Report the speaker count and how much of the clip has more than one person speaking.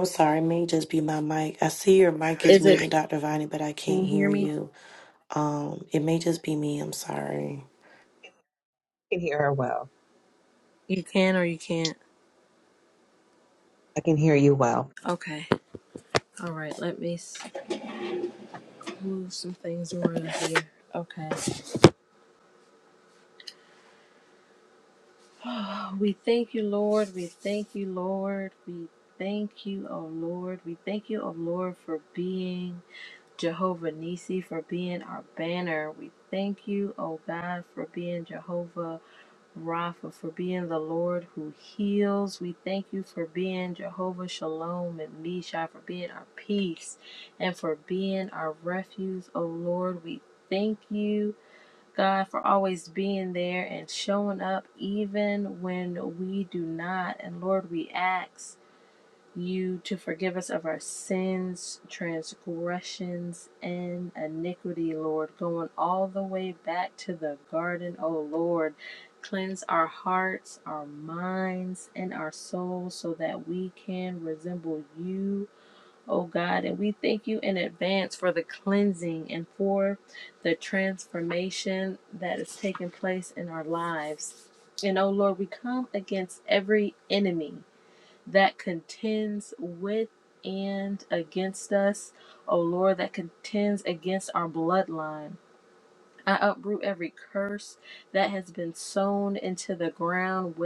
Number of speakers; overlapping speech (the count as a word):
three, about 1%